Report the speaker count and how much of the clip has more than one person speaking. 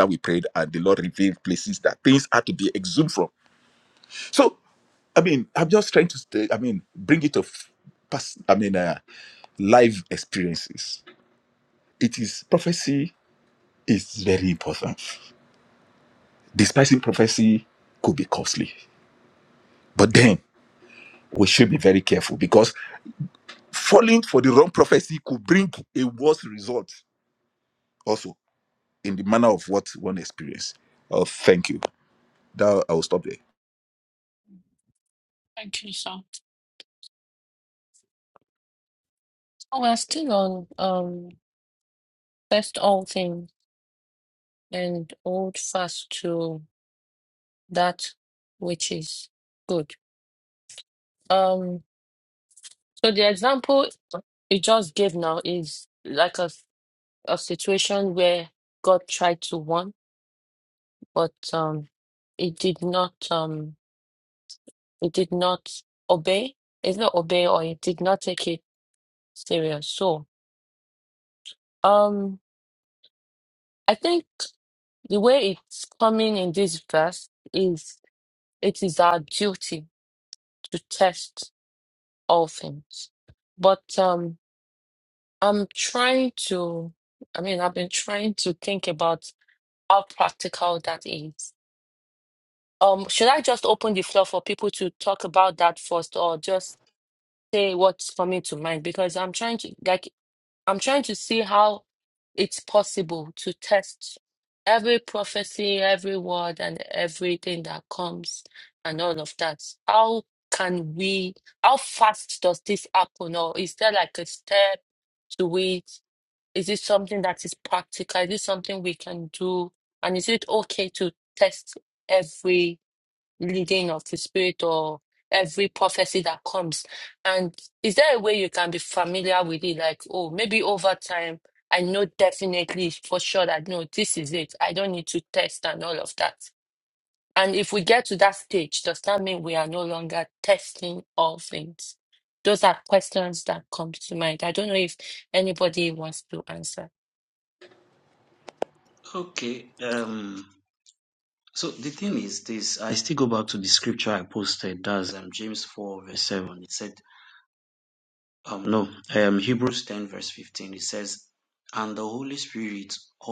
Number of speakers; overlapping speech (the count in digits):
3, no overlap